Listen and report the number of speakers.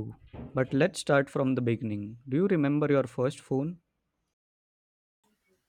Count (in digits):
1